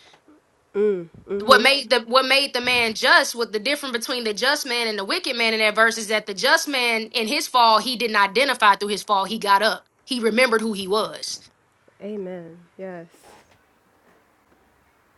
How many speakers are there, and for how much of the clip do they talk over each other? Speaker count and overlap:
2, about 2%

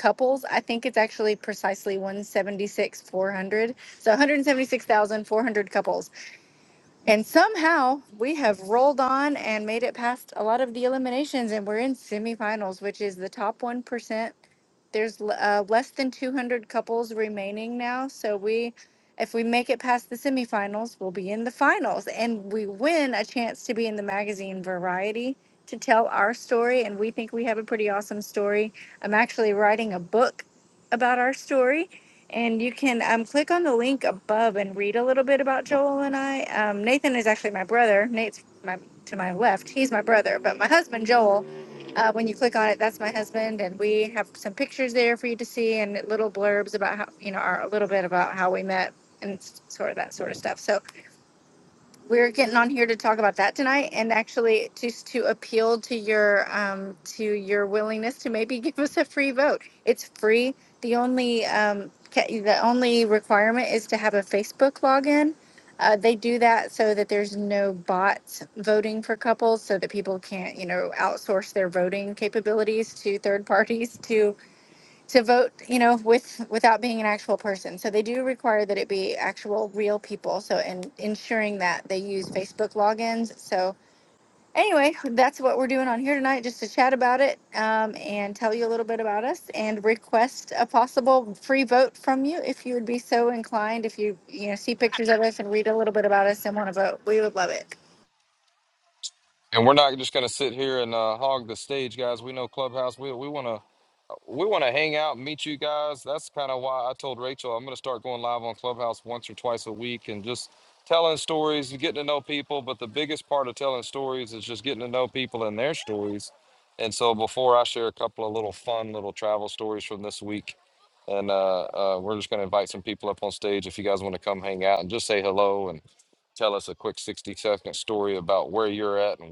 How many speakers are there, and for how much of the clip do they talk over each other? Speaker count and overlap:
2, no overlap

